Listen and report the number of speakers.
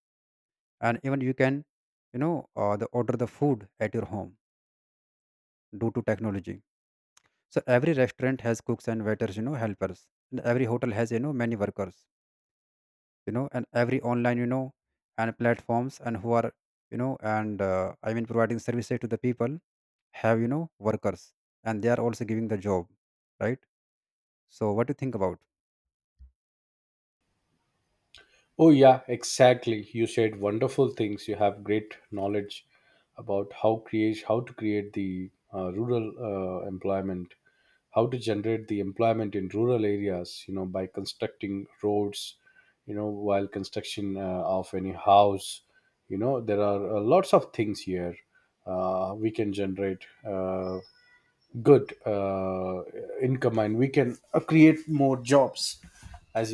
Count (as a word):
two